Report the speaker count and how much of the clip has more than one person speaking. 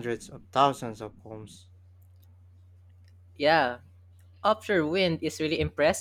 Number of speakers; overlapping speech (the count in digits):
2, no overlap